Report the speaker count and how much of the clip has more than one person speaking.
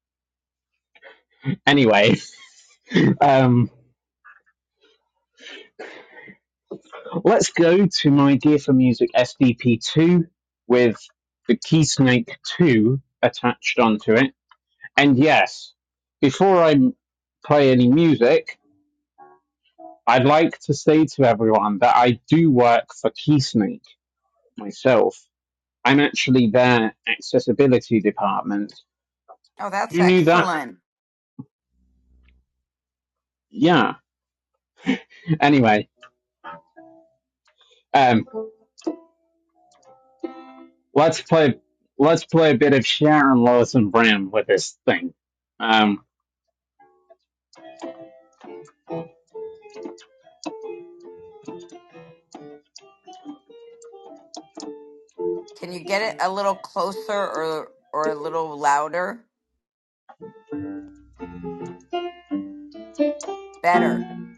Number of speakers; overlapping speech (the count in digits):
2, about 1%